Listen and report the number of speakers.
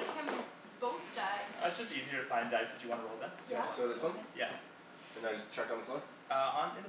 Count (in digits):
3